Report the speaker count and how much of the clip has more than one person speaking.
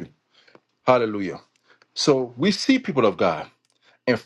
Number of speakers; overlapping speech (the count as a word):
one, no overlap